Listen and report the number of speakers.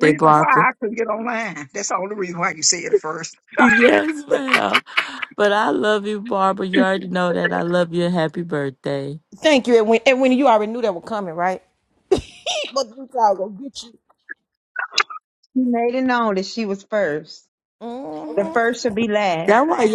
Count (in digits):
4